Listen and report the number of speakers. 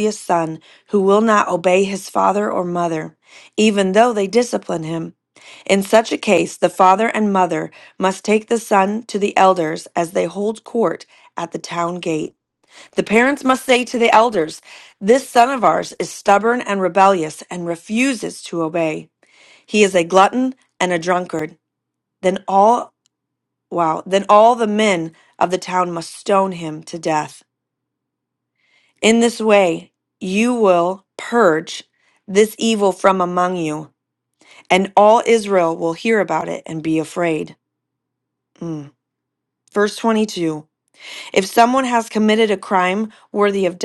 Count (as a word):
one